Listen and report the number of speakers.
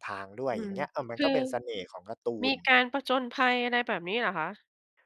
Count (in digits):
2